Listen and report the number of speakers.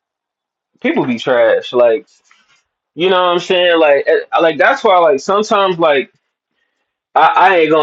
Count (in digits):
1